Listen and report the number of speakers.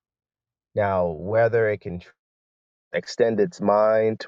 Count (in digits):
1